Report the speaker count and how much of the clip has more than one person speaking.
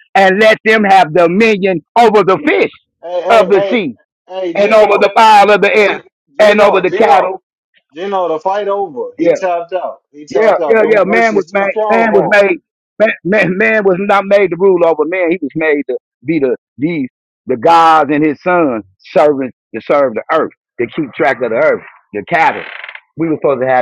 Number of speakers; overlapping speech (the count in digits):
2, about 19%